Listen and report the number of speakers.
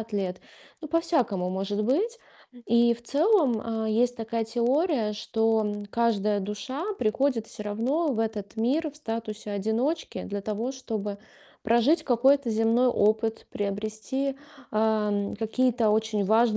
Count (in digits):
1